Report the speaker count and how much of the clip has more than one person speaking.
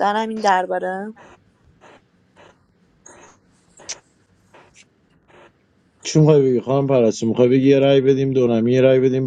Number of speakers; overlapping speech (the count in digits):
2, no overlap